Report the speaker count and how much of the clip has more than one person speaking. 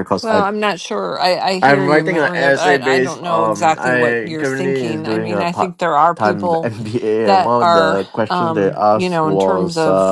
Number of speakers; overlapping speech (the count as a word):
two, about 77%